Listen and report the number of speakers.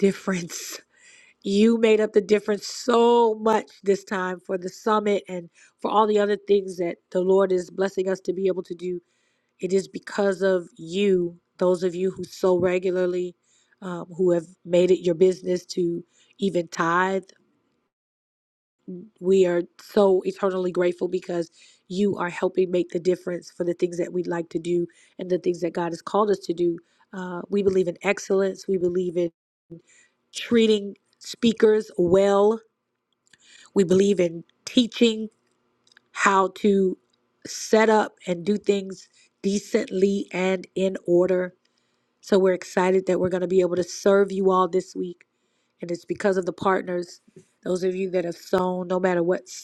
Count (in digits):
1